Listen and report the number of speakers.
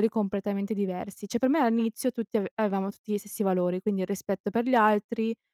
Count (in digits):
1